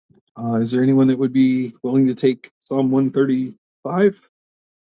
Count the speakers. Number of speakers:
one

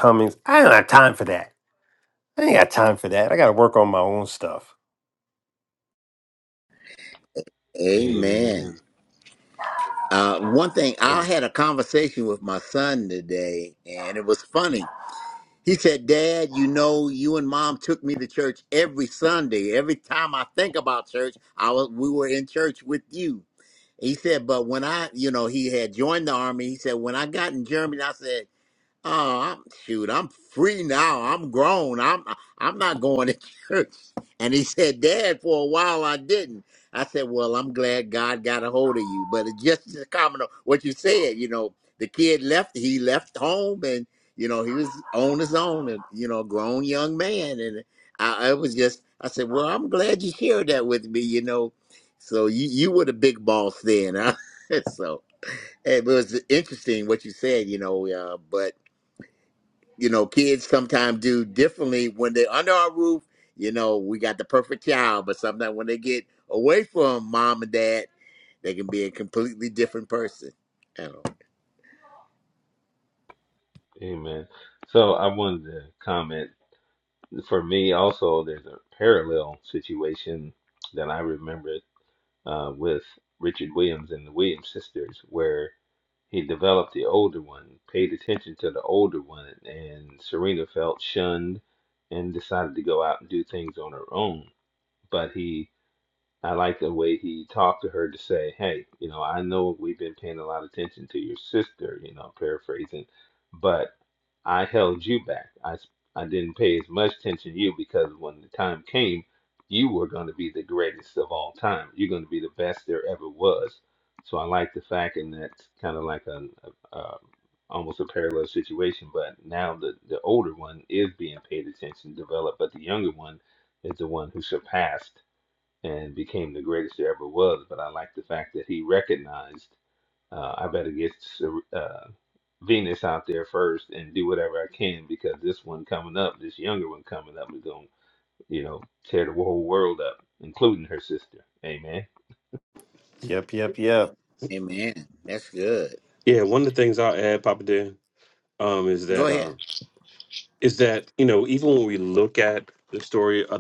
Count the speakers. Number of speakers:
four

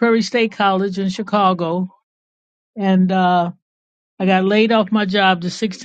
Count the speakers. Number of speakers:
one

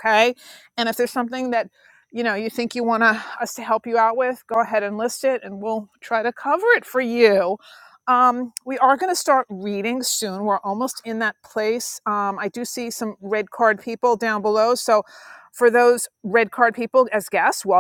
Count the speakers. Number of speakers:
one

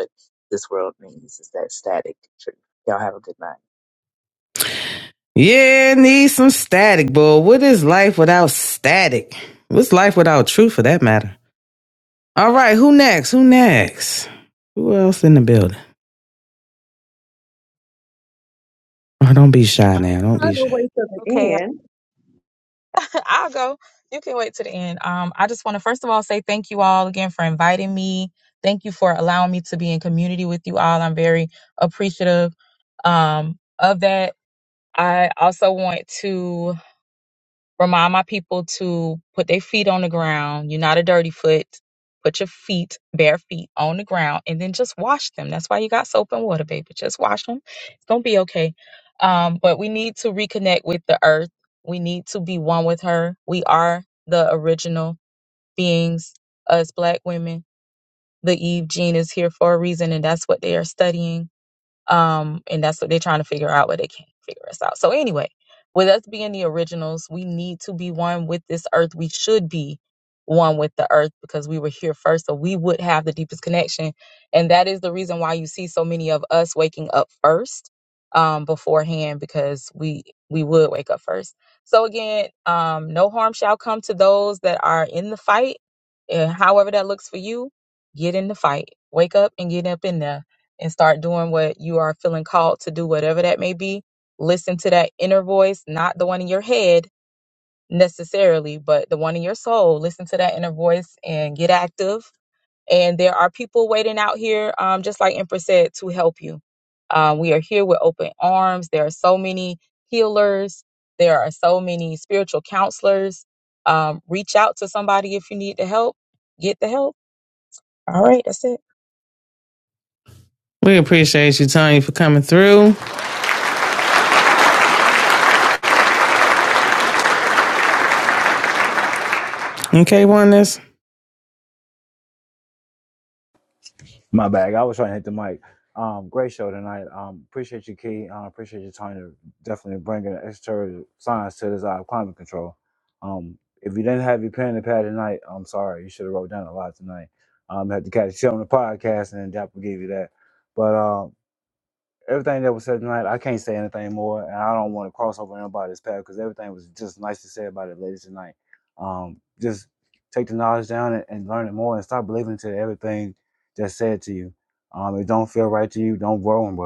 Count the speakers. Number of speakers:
five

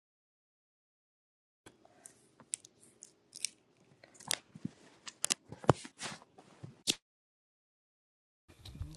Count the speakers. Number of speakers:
zero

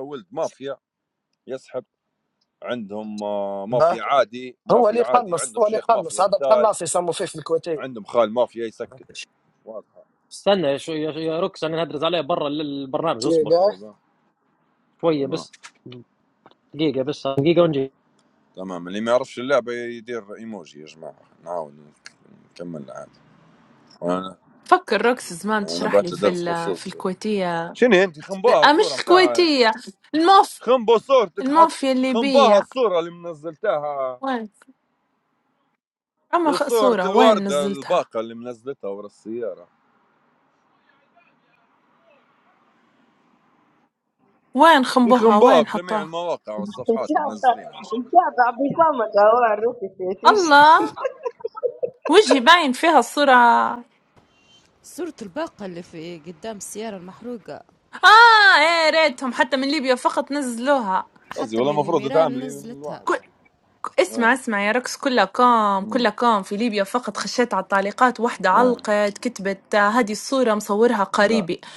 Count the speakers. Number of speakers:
six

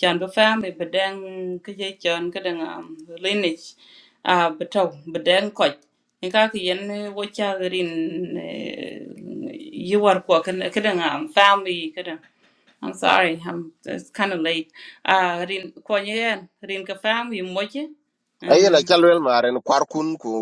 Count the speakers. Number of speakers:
two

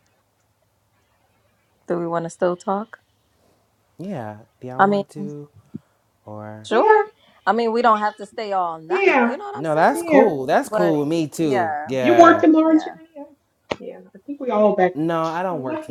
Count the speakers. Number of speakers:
three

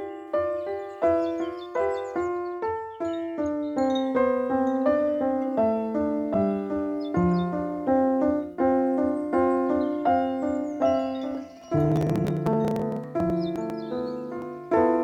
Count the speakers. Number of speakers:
zero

